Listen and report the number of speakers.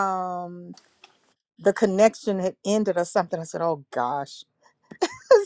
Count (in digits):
1